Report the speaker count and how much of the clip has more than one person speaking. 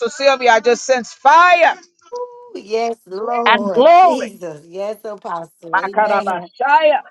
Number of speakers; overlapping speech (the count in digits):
2, about 22%